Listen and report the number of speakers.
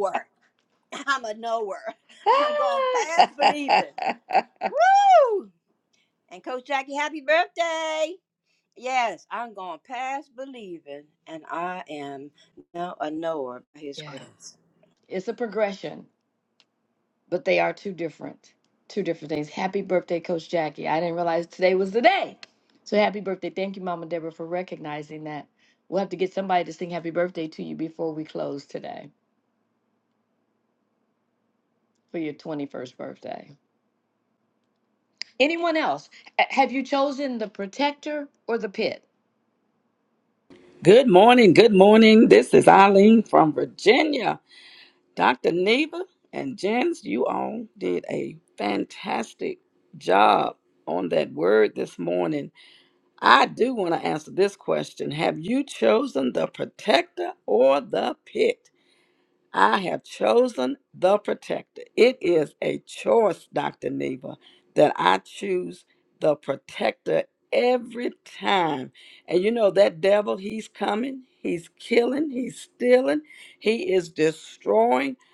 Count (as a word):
three